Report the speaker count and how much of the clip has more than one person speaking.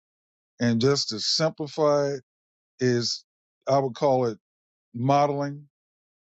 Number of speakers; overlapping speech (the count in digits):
1, no overlap